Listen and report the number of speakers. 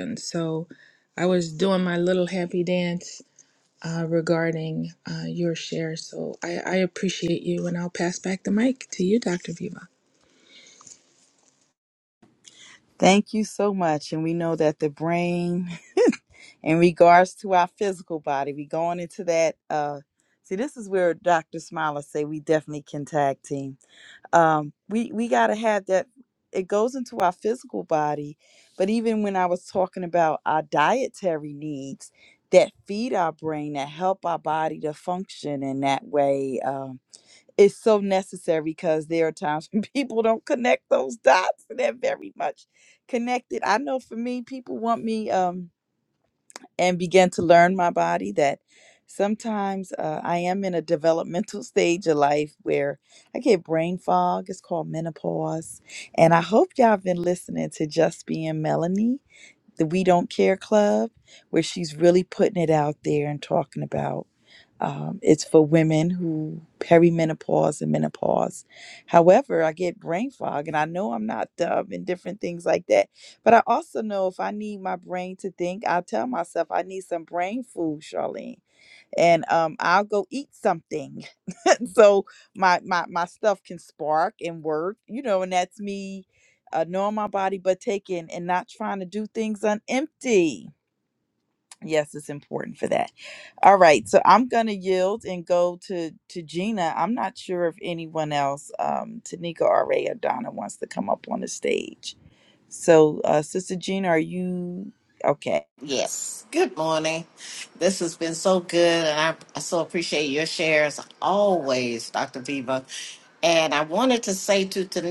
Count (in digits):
3